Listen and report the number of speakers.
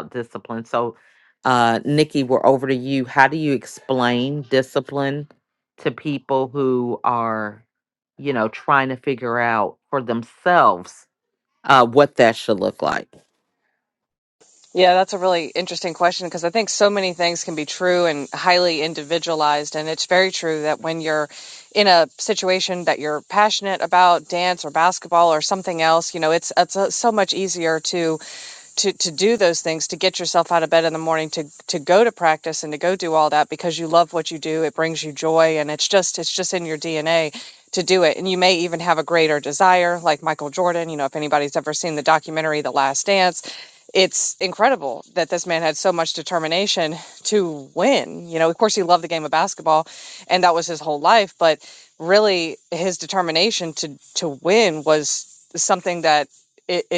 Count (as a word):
two